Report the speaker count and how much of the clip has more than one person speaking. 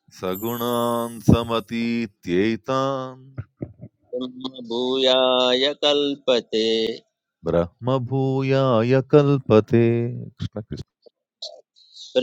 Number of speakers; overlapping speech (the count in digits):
2, no overlap